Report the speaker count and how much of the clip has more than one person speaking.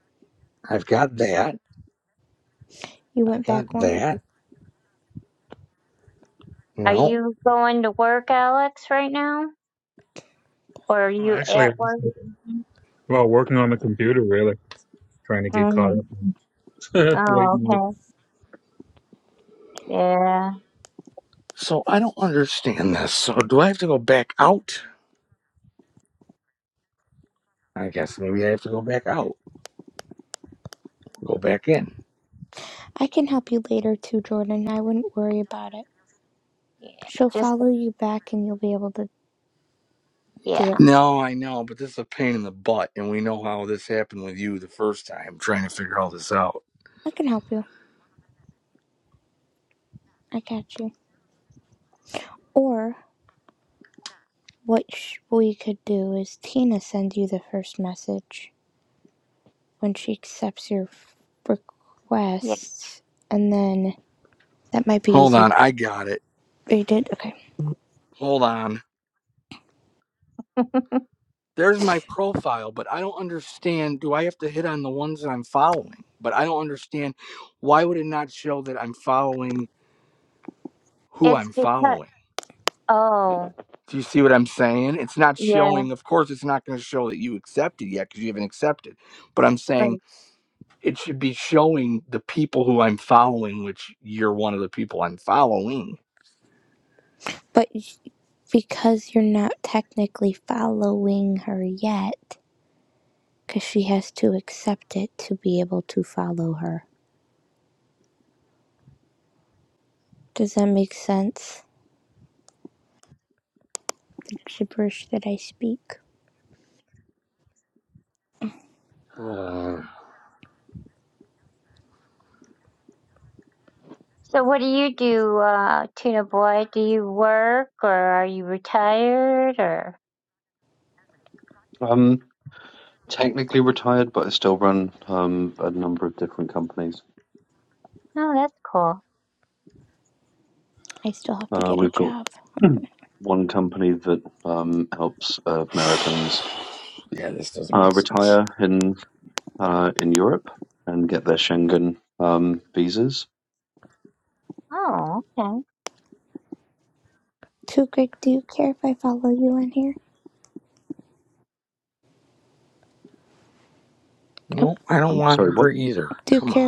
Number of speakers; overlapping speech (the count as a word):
five, about 4%